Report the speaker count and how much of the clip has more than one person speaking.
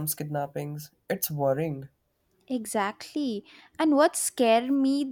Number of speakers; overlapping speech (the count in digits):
2, no overlap